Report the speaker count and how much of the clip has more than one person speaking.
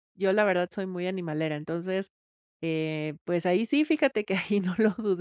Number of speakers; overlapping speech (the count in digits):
1, no overlap